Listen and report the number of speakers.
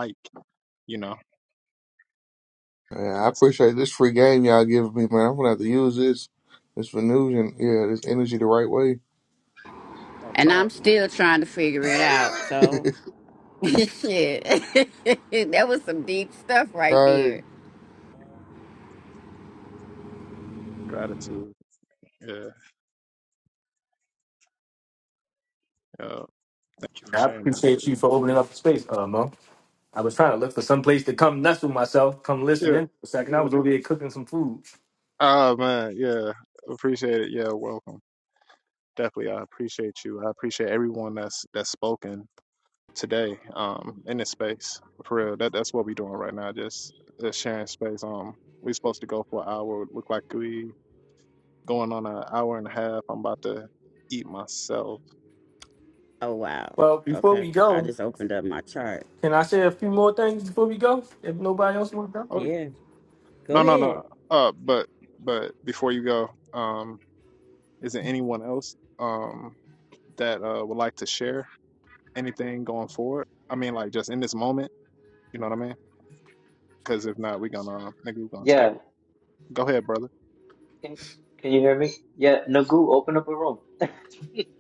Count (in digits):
5